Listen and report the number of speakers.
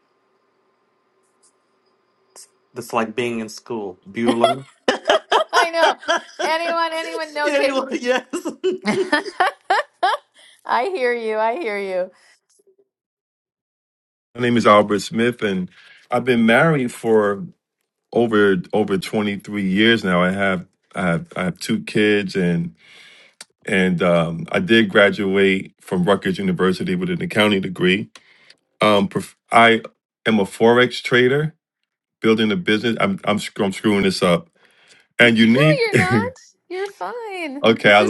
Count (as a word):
three